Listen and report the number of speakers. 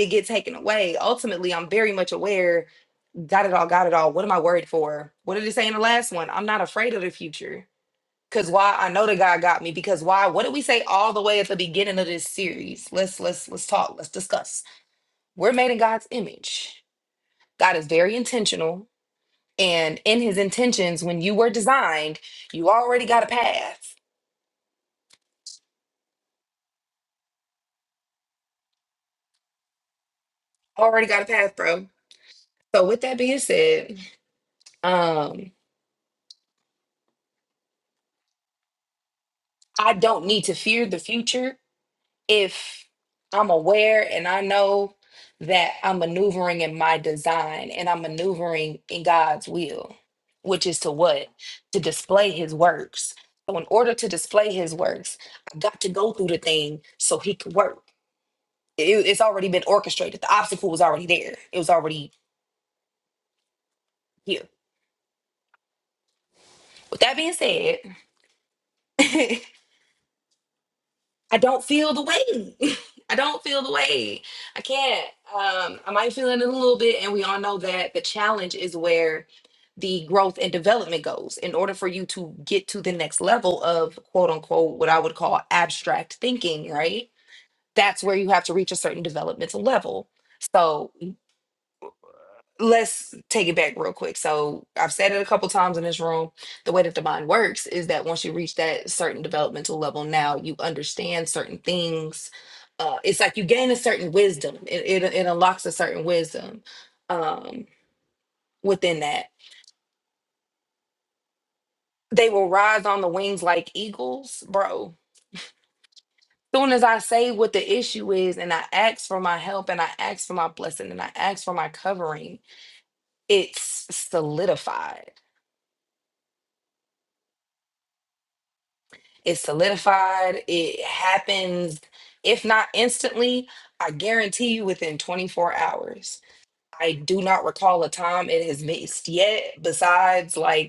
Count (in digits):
1